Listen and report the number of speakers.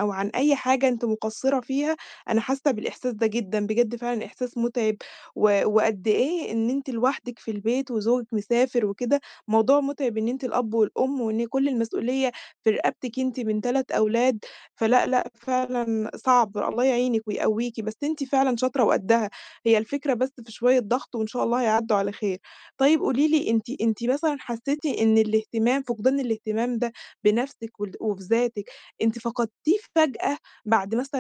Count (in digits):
1